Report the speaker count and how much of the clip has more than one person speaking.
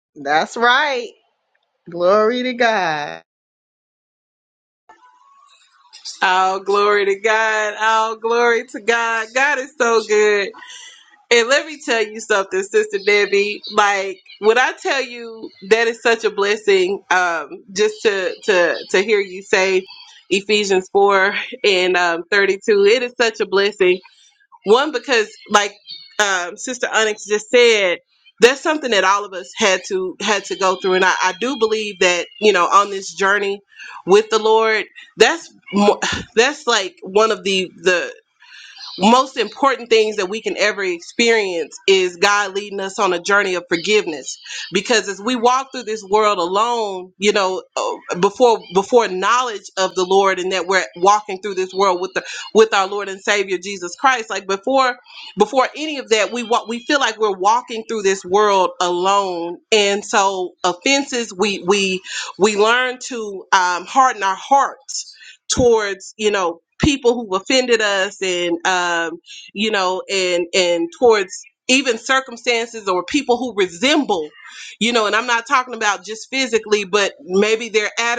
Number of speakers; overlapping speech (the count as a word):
two, no overlap